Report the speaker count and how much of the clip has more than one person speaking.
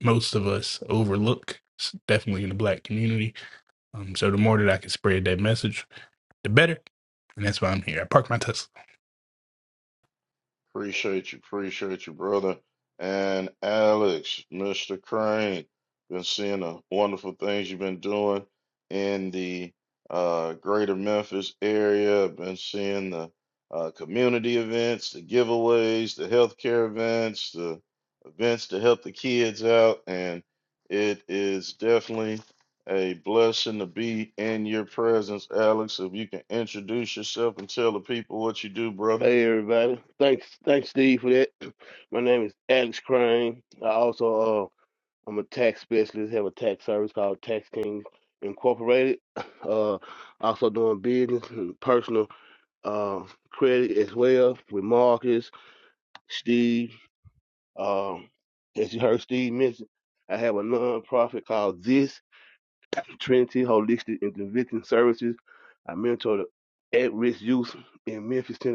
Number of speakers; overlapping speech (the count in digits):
3, under 1%